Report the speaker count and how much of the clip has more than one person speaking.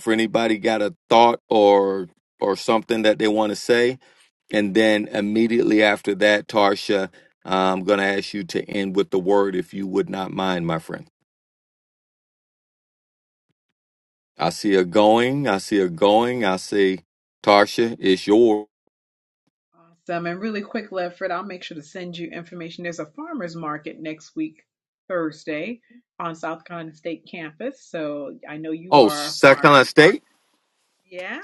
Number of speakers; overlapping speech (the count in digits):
2, about 2%